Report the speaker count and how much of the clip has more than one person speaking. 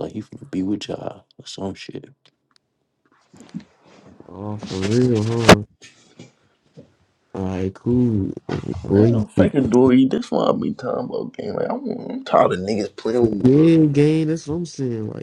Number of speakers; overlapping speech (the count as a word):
three, about 4%